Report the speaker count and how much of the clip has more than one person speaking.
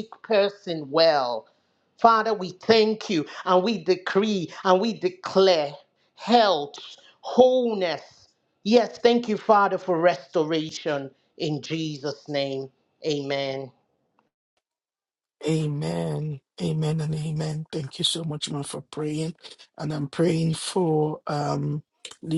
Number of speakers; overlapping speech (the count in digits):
2, no overlap